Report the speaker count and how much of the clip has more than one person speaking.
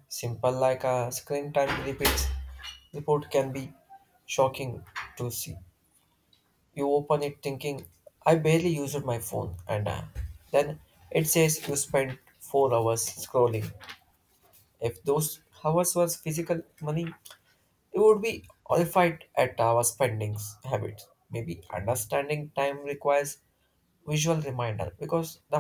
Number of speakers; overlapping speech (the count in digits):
1, no overlap